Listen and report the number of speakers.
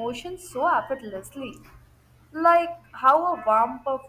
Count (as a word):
one